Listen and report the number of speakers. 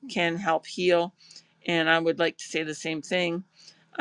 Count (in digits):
1